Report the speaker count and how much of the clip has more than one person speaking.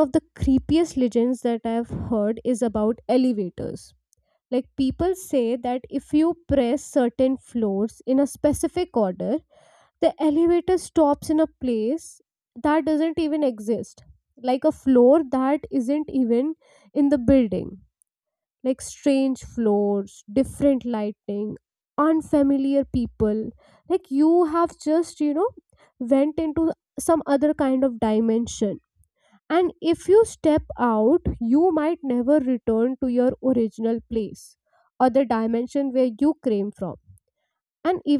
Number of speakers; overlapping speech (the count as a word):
one, no overlap